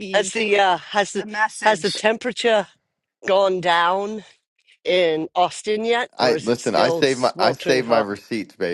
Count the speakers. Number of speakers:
three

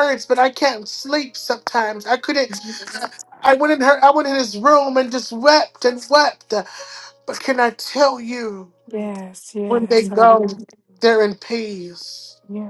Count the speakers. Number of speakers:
two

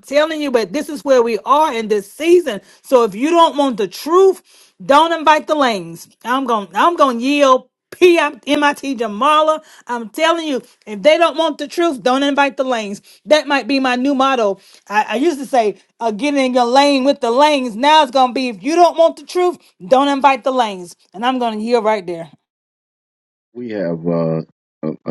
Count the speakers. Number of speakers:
two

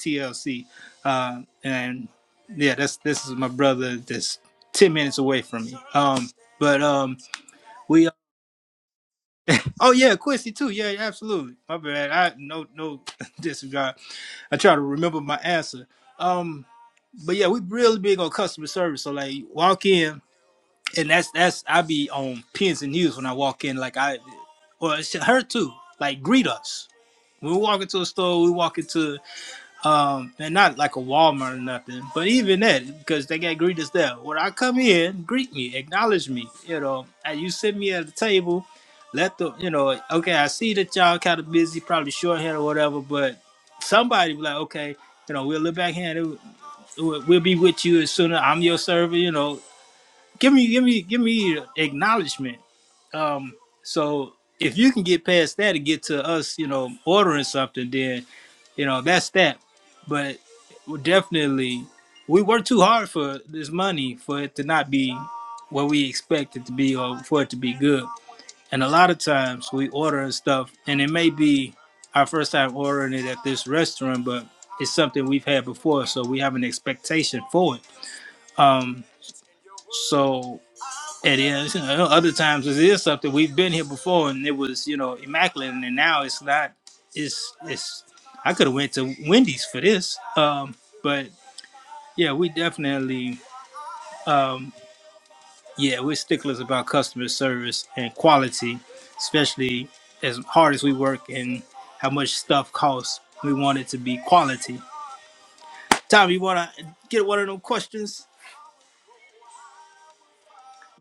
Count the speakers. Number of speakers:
one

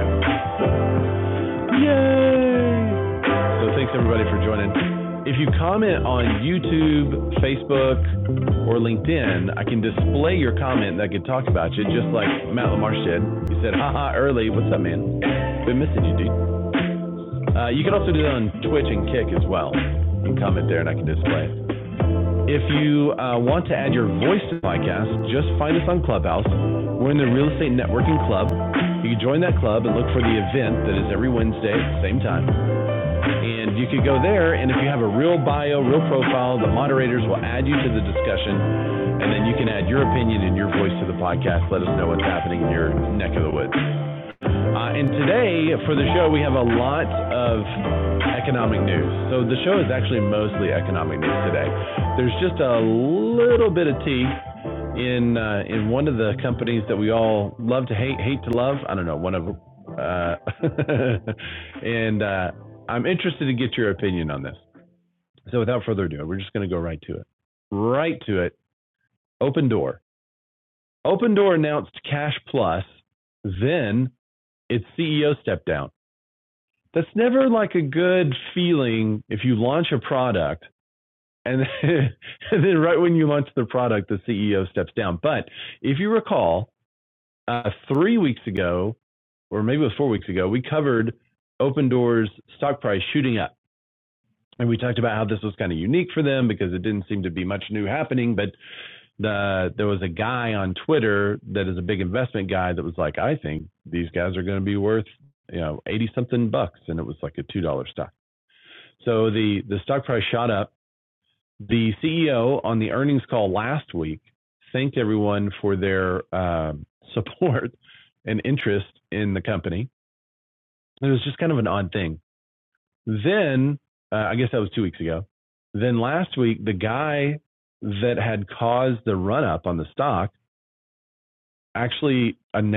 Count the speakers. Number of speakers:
one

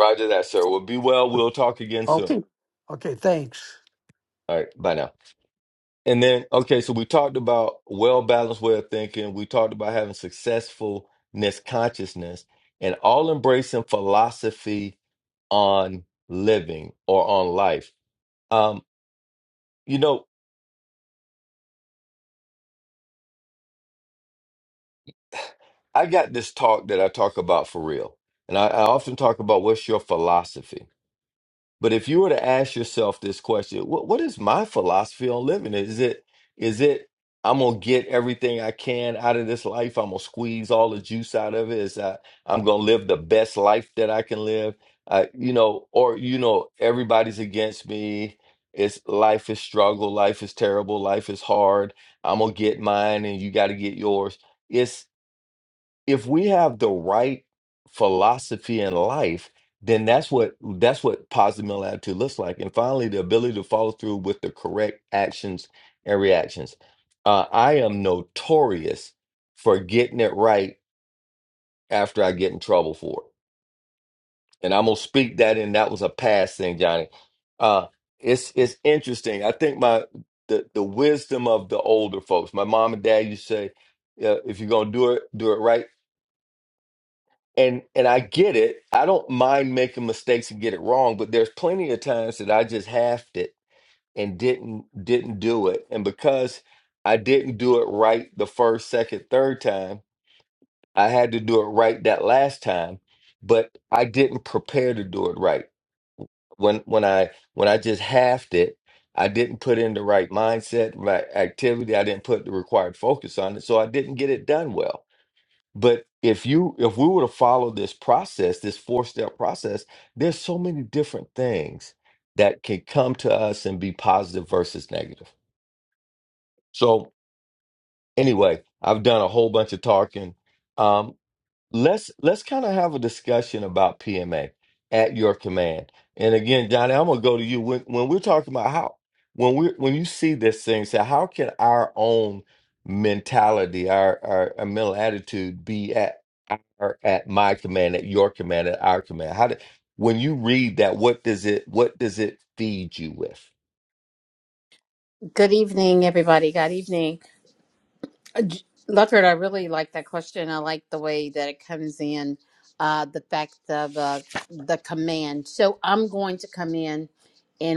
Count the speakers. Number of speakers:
three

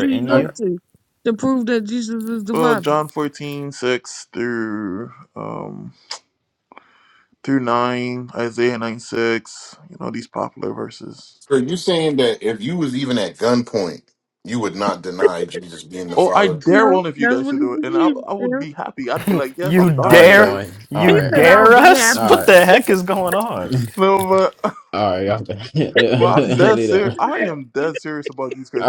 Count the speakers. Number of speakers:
five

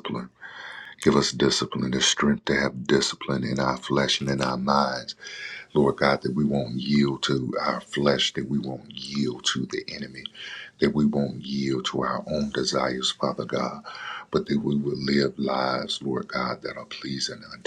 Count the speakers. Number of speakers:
one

